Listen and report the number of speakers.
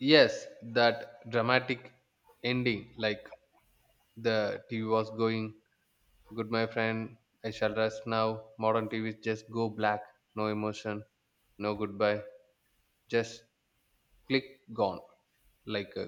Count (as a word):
one